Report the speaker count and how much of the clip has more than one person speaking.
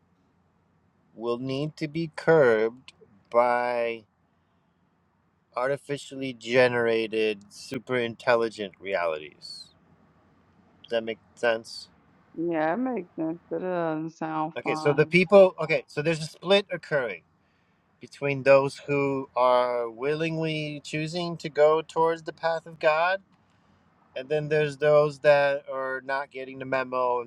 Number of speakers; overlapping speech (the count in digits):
2, about 2%